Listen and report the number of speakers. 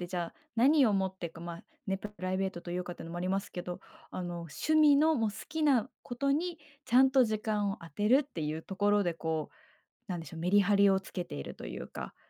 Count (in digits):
1